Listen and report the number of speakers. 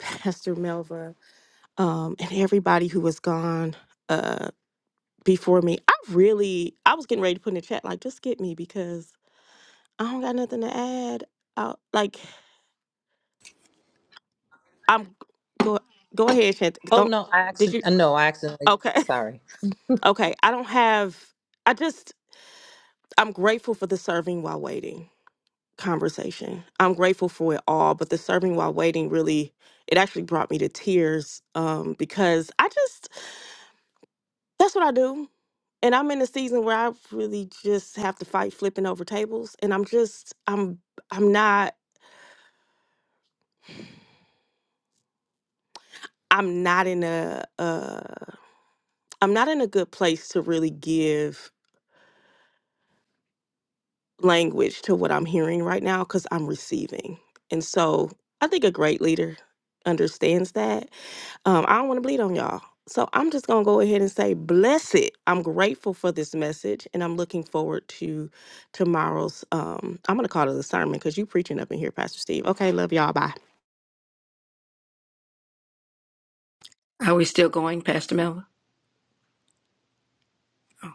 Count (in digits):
3